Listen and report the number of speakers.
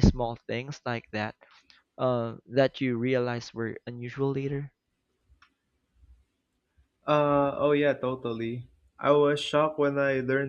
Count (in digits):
2